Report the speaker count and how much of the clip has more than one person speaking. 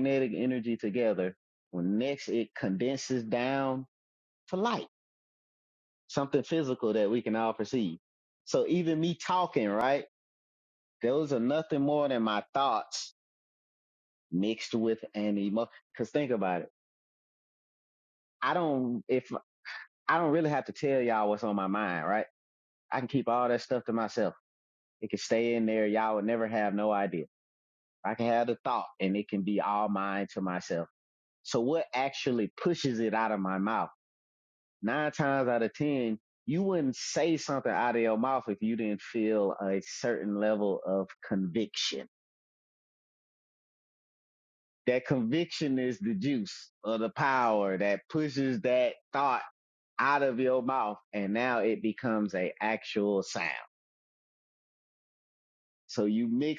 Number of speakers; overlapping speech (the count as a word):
one, no overlap